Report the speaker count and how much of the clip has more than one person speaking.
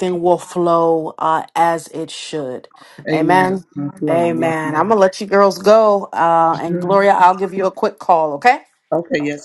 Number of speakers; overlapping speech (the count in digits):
2, about 20%